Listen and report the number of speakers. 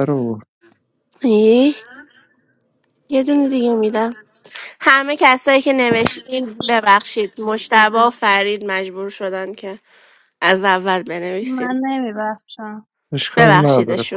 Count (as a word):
three